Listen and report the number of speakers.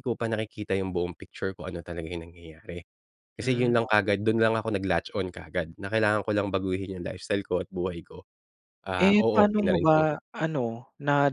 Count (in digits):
2